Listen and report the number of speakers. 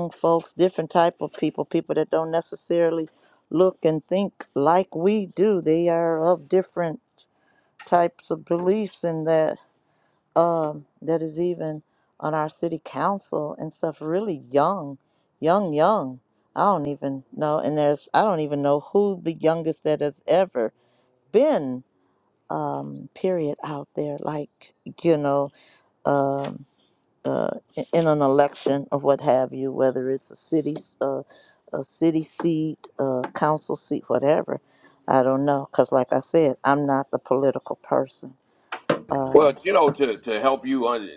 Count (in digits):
2